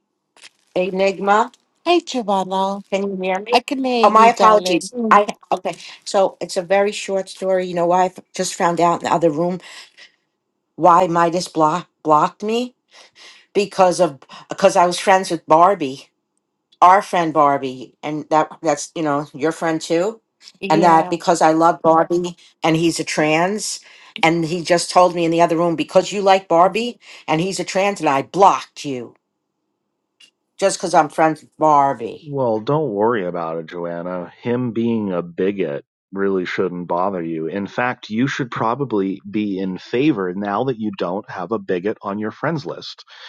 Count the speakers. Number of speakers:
three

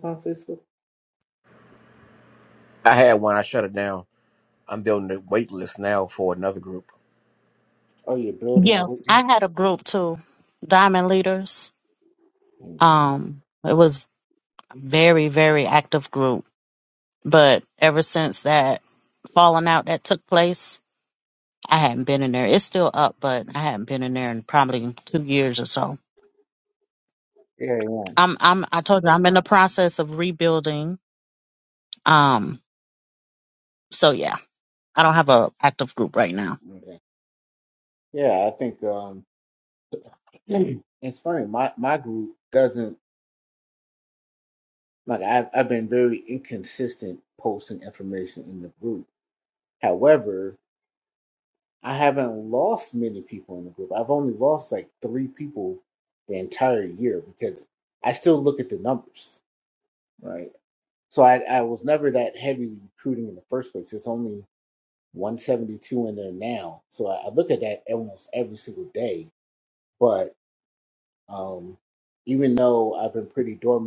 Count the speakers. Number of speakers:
three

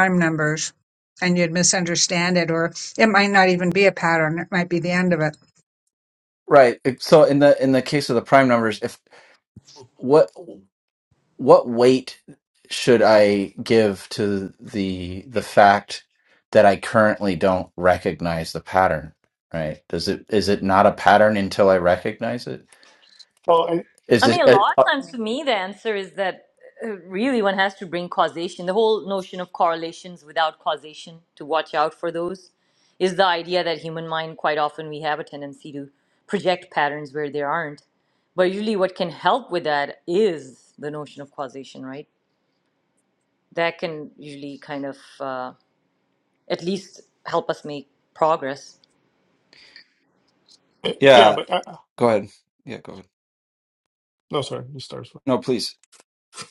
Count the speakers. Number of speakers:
four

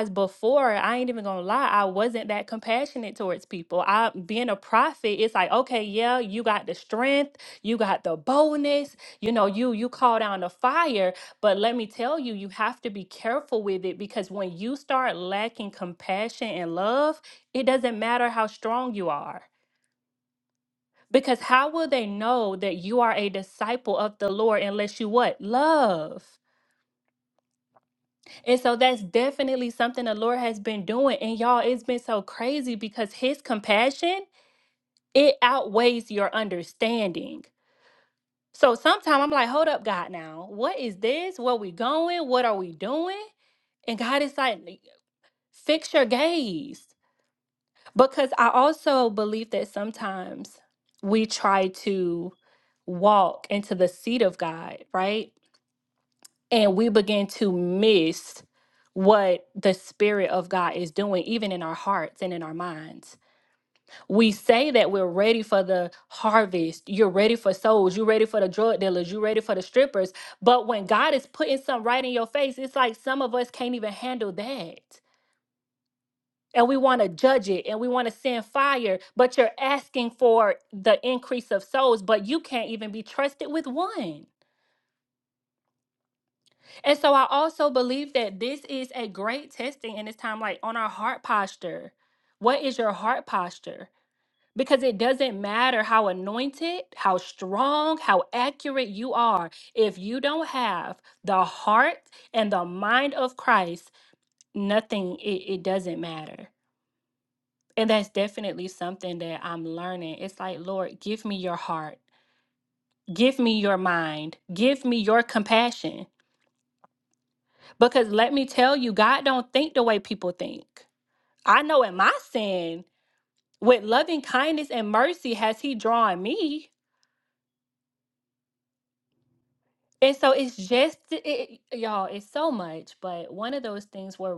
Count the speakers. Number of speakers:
one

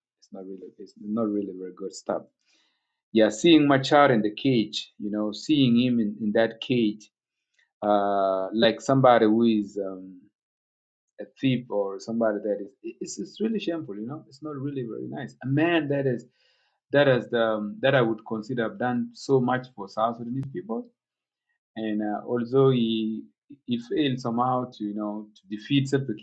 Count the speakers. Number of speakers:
one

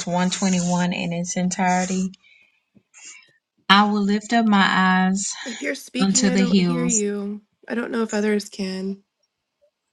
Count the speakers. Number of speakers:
two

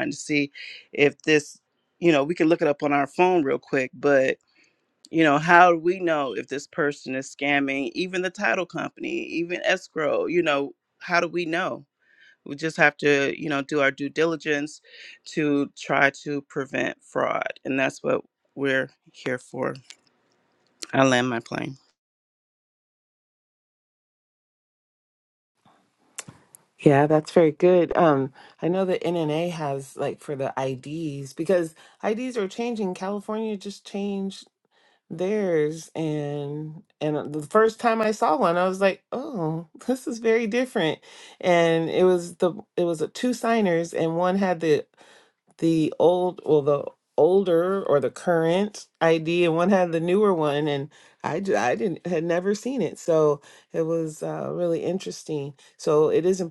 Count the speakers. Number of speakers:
two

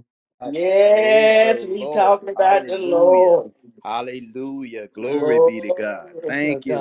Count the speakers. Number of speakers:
two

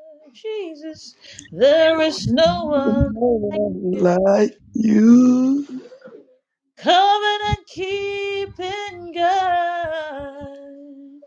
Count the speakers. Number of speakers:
two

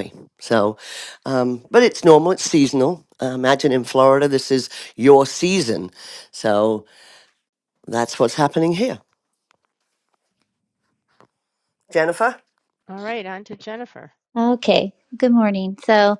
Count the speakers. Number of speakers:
three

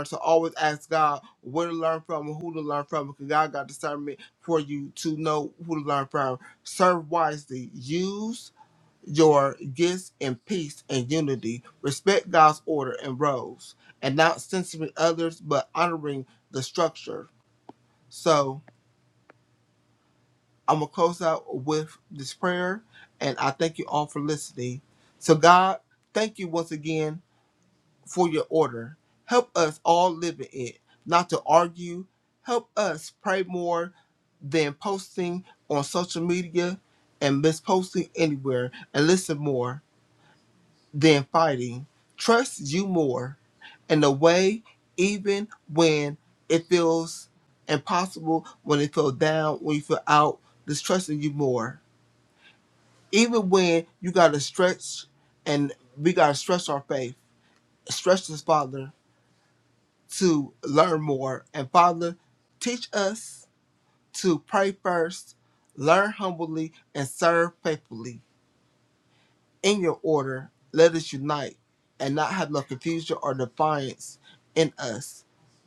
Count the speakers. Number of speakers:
one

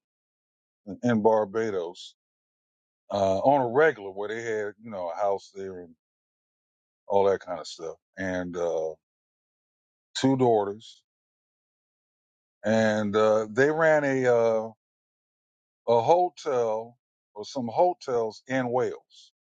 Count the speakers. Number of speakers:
one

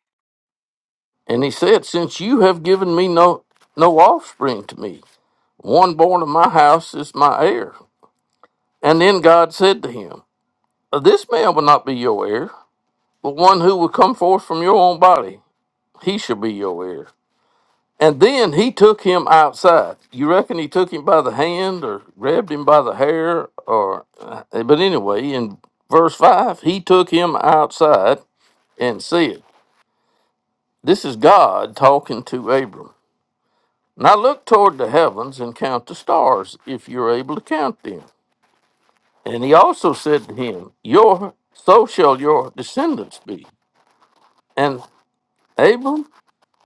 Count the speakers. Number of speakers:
one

